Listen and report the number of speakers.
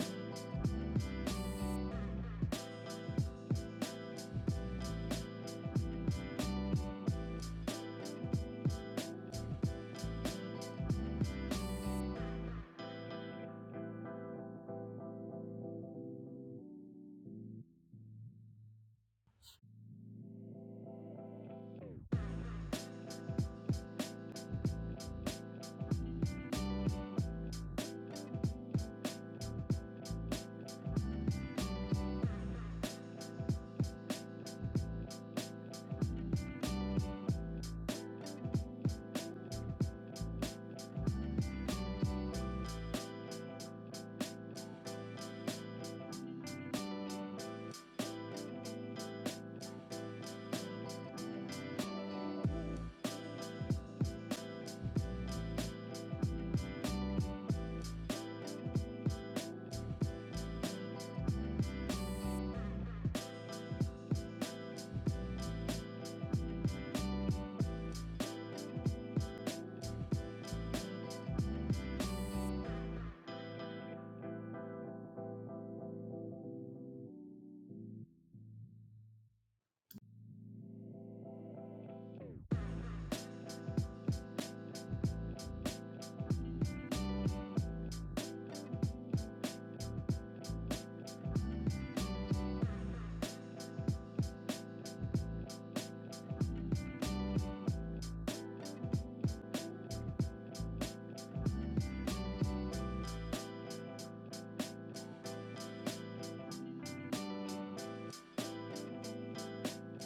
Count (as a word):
zero